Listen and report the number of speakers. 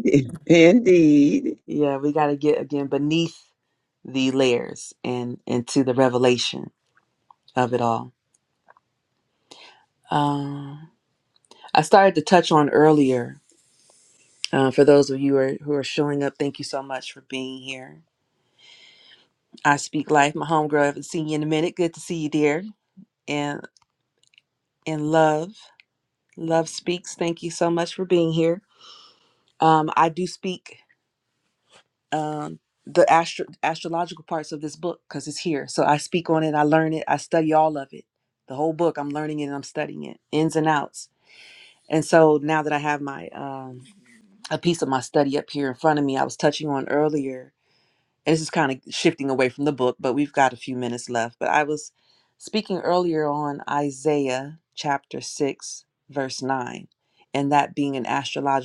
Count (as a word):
two